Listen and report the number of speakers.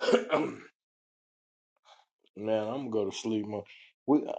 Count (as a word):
one